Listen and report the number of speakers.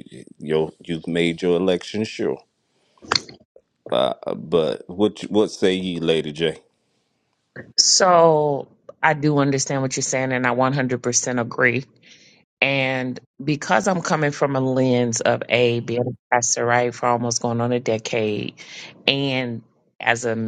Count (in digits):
2